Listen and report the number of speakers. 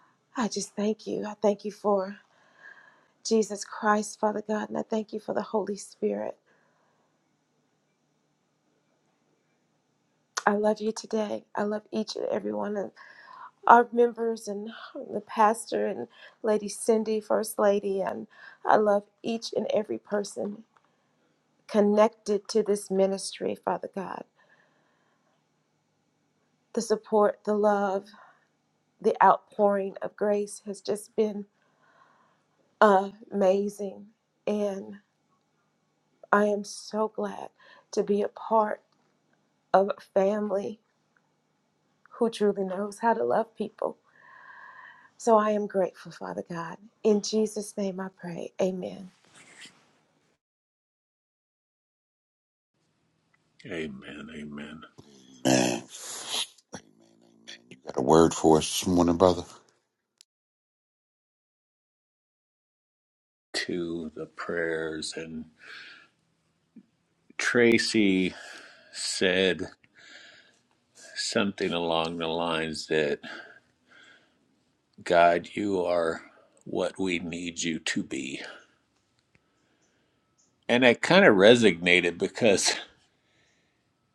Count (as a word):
three